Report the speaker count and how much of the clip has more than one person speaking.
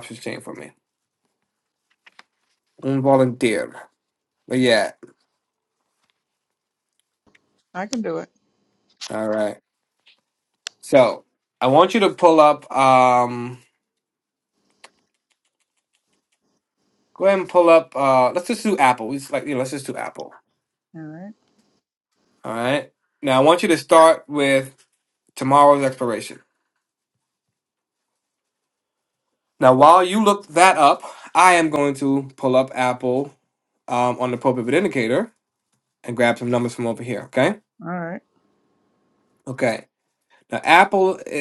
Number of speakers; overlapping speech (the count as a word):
two, no overlap